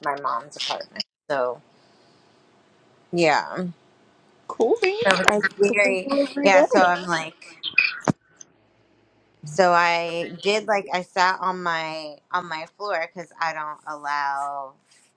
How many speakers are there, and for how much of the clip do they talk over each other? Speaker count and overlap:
2, about 11%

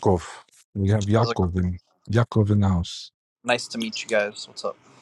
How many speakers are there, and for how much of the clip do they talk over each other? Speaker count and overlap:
2, about 6%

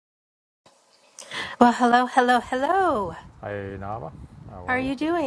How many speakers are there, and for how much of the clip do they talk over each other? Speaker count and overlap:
2, about 5%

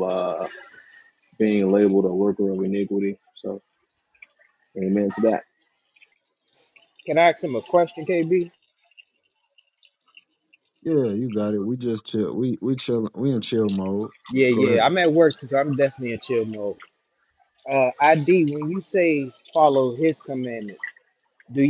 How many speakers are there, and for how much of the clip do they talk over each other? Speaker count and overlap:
3, about 3%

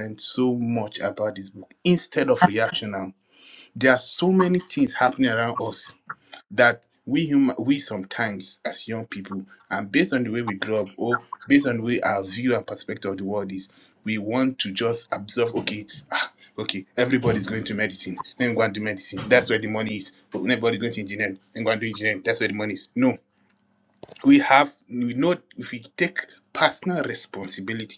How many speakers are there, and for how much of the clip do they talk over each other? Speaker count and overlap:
1, no overlap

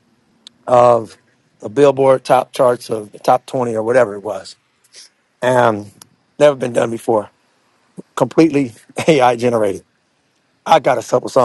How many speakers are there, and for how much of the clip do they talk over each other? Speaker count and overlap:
1, no overlap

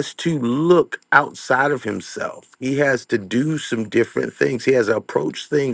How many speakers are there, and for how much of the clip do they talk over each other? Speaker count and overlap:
1, no overlap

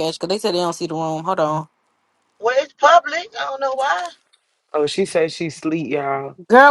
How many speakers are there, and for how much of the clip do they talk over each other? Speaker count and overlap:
3, no overlap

